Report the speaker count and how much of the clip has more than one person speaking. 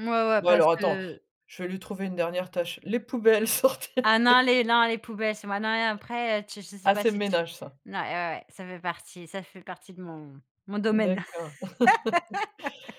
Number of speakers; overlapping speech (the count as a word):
two, about 12%